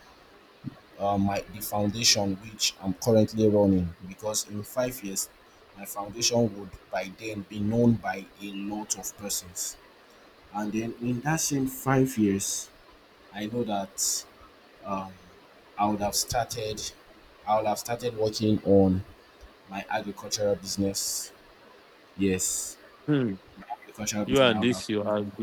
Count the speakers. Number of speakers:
two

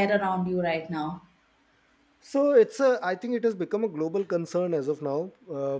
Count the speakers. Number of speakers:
two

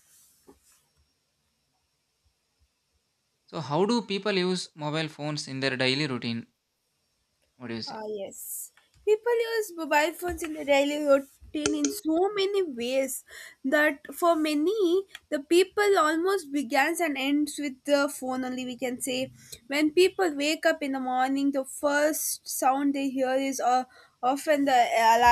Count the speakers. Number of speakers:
two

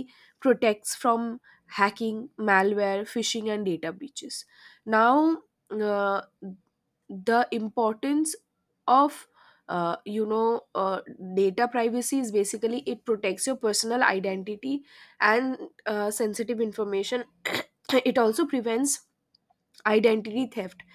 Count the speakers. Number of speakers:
one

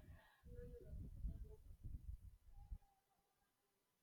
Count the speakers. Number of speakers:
zero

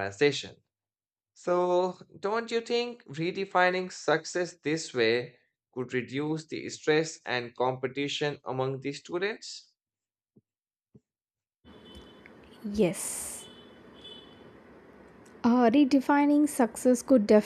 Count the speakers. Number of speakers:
two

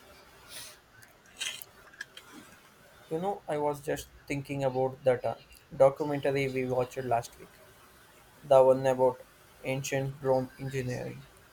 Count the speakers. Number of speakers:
one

